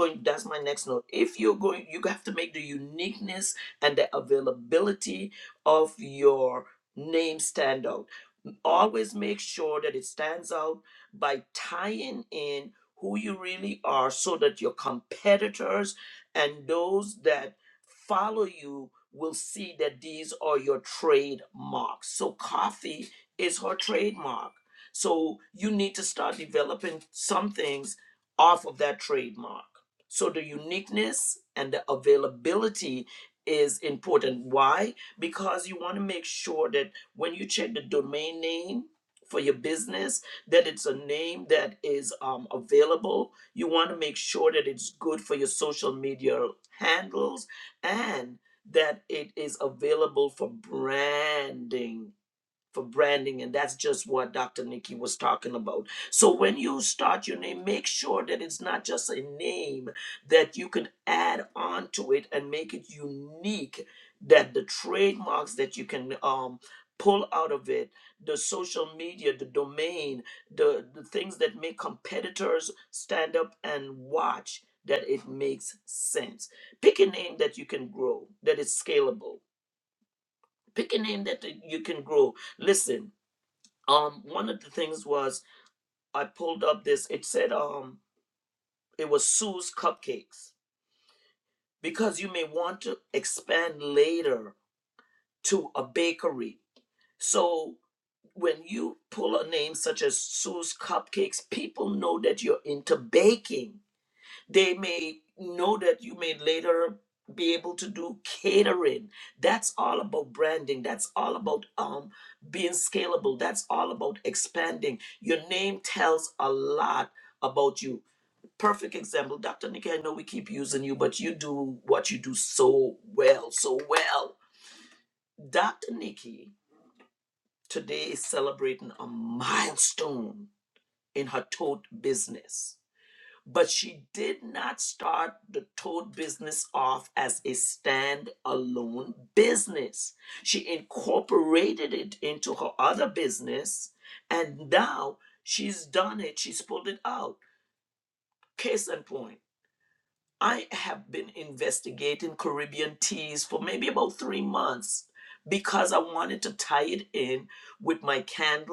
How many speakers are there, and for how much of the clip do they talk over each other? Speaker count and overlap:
1, no overlap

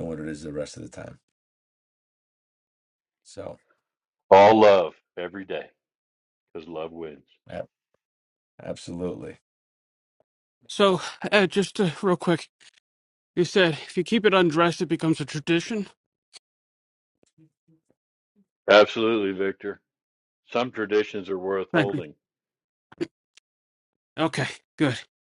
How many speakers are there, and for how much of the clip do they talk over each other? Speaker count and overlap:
3, about 1%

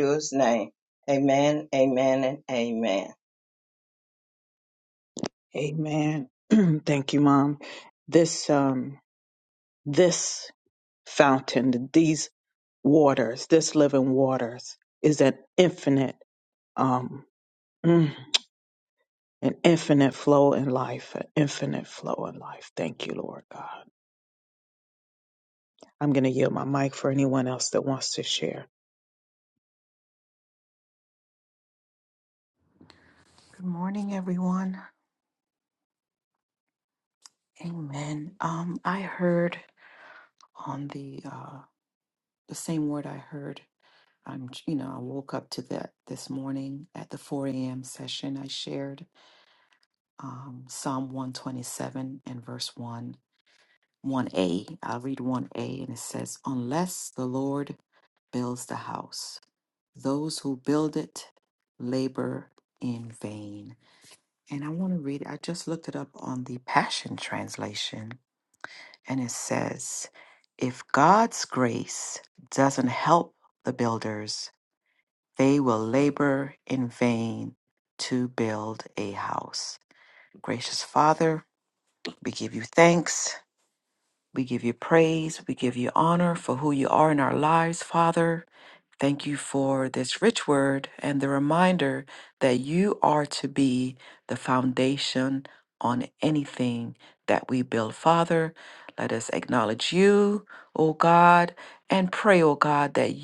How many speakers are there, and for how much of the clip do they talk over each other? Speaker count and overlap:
3, no overlap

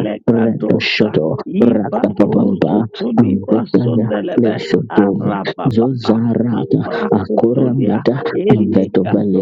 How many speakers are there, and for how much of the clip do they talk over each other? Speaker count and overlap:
2, about 59%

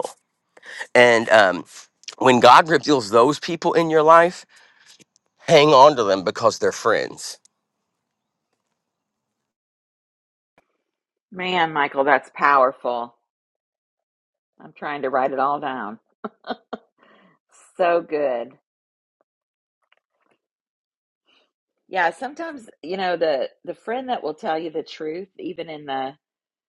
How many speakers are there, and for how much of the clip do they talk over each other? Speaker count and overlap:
2, no overlap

